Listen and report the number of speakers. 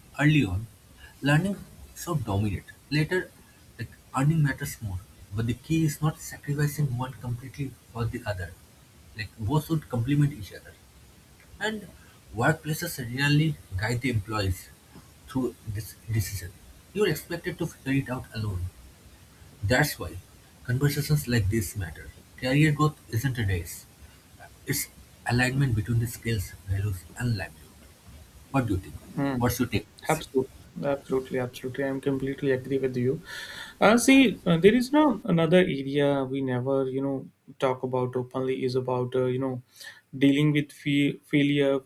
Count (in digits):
2